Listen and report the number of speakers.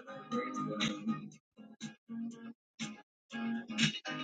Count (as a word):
zero